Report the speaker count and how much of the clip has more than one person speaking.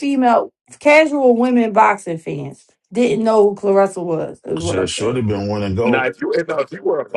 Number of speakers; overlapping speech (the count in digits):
3, about 12%